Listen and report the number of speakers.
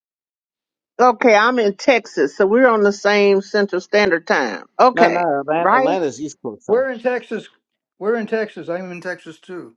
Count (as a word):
three